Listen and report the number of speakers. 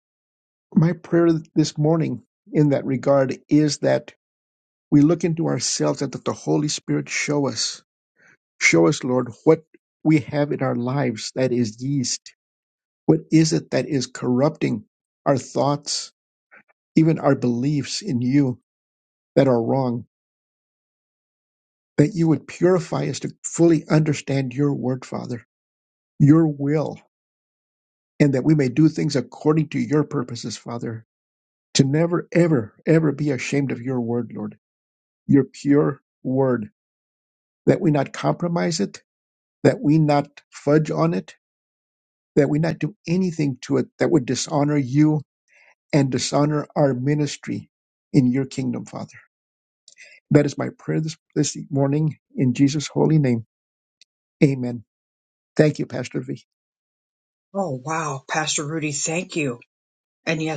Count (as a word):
two